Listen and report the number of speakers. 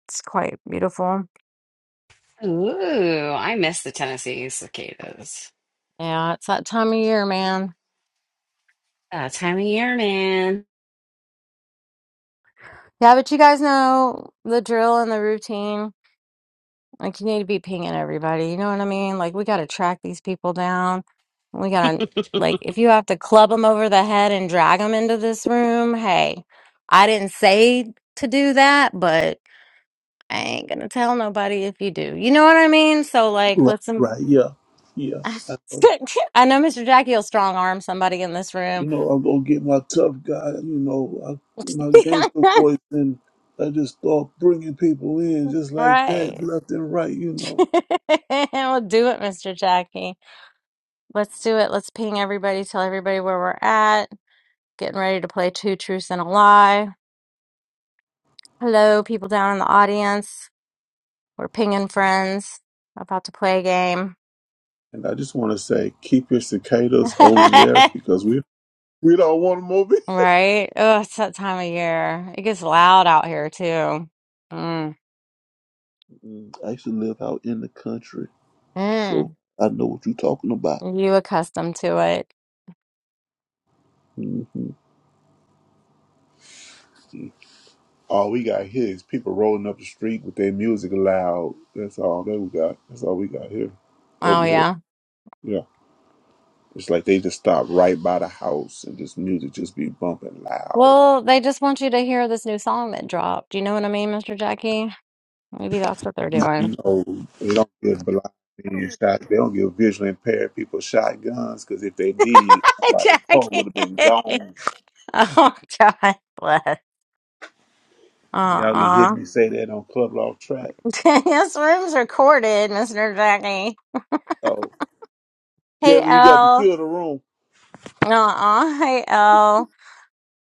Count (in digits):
3